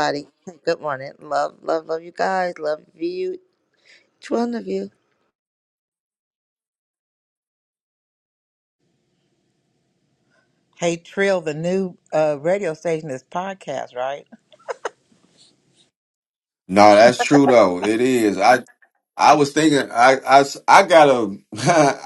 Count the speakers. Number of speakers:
3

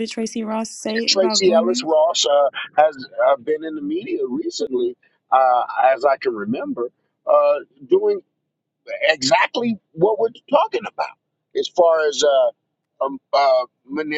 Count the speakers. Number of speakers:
2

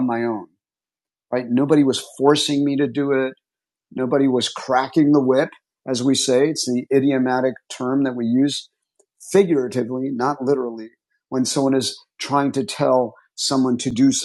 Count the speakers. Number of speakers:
1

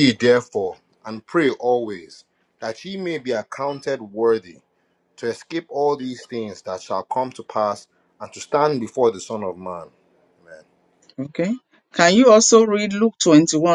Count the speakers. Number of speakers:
2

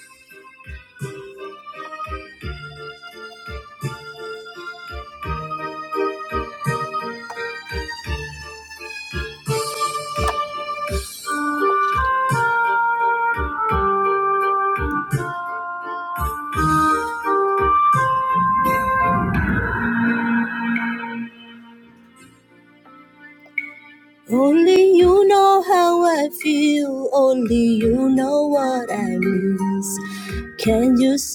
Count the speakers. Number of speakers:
1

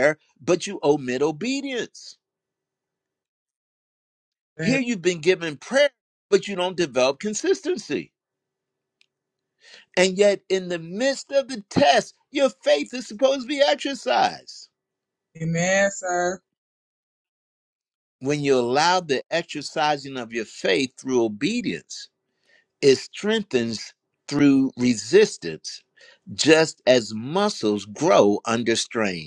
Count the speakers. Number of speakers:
2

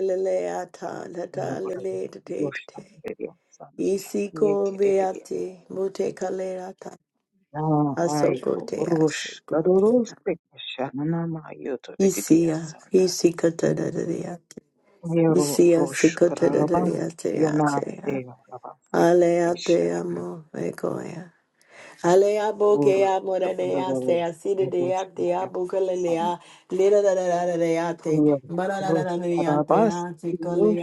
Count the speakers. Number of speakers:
2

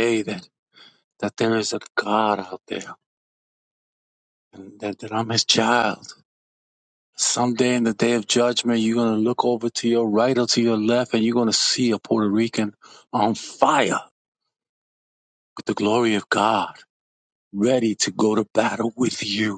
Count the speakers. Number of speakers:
1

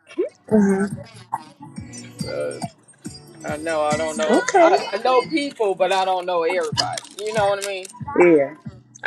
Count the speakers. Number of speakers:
2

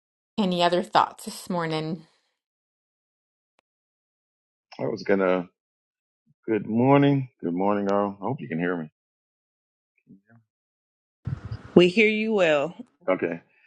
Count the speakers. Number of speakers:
3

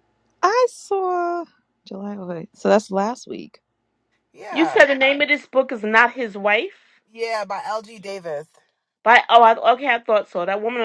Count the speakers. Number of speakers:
3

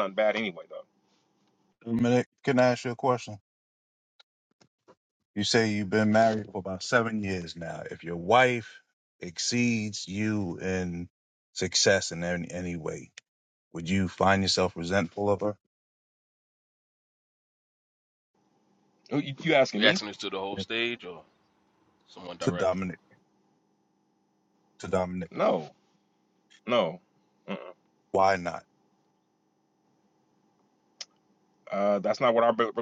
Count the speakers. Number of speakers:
3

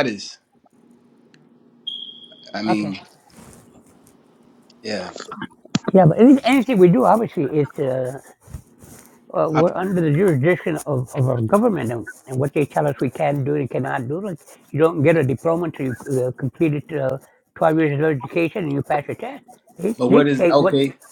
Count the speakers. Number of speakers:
2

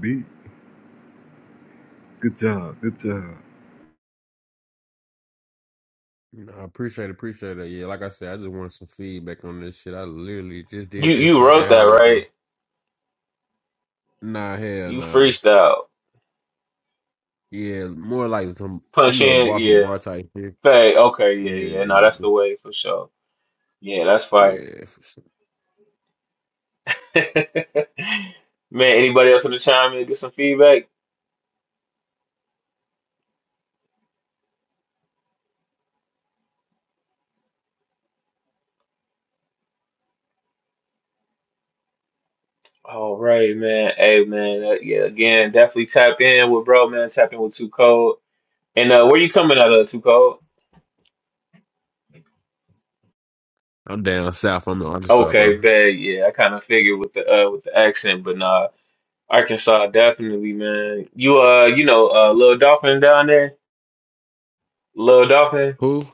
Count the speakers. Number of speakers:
3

